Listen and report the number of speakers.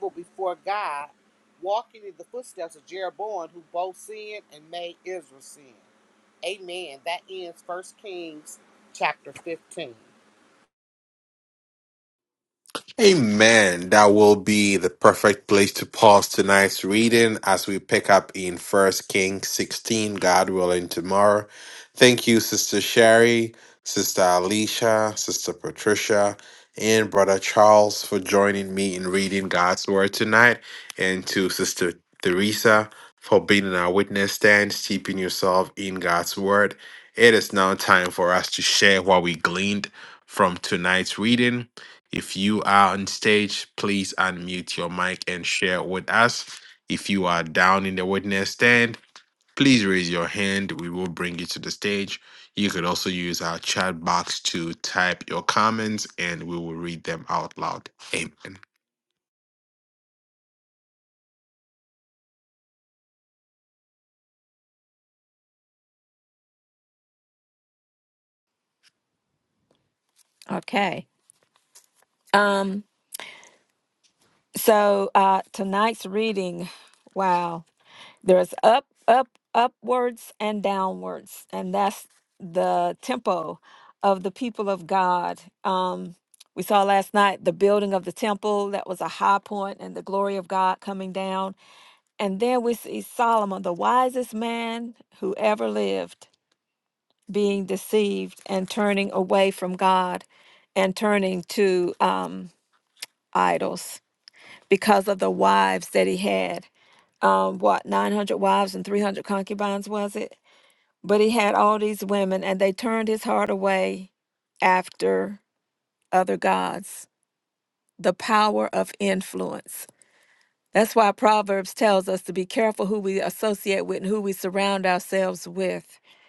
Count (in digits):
3